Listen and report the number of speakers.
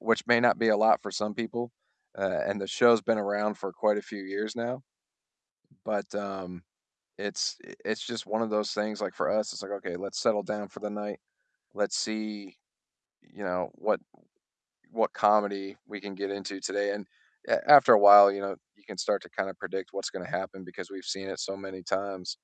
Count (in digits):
1